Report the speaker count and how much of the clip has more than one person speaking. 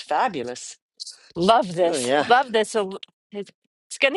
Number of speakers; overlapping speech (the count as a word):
two, about 11%